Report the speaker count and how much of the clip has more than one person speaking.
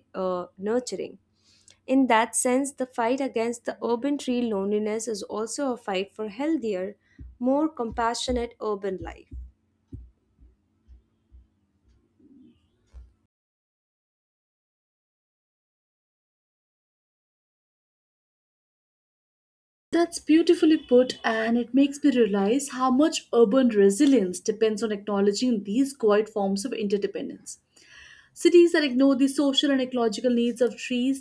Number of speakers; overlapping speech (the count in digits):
2, no overlap